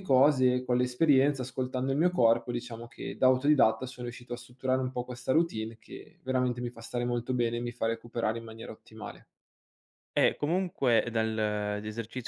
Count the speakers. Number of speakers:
2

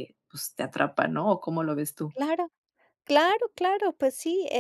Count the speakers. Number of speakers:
2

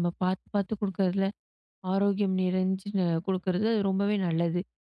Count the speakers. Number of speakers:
1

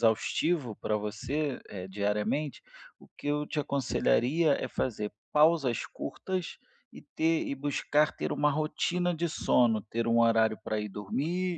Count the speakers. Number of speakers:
1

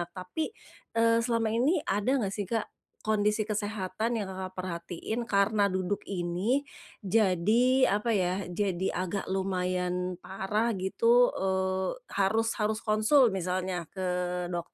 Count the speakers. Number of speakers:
1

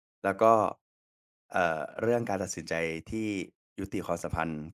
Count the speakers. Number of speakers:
1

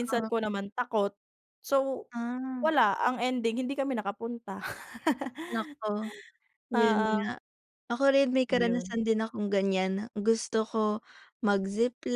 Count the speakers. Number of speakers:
2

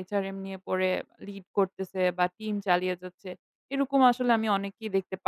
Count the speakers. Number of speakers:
1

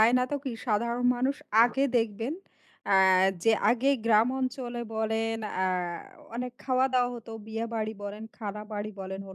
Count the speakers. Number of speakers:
1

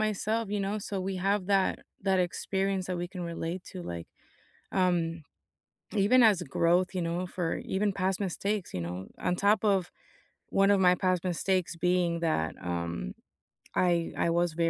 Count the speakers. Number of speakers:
1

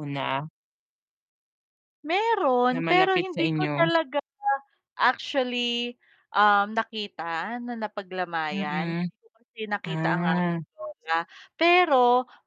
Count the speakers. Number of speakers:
2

